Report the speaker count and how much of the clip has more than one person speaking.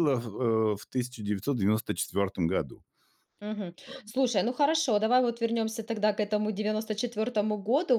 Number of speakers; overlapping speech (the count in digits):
2, about 2%